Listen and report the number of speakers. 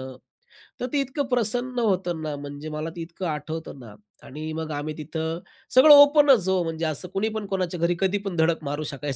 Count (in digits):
1